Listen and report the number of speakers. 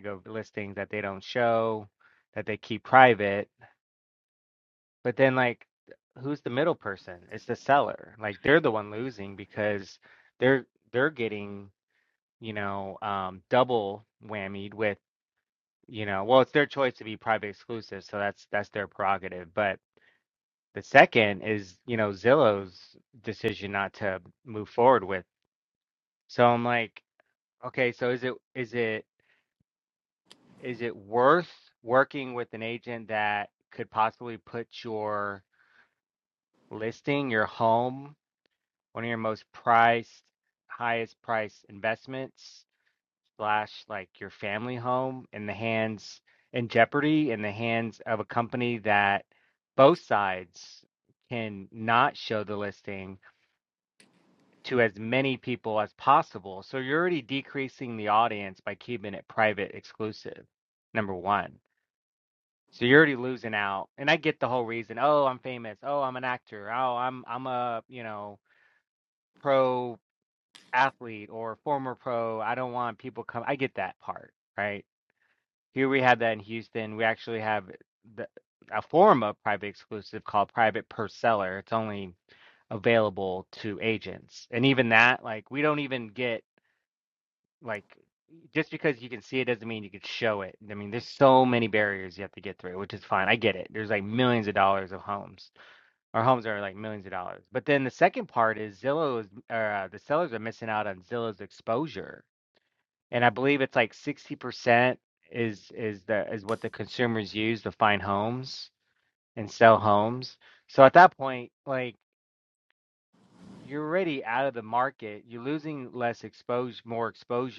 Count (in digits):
1